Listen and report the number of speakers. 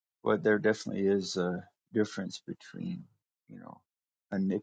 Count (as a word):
one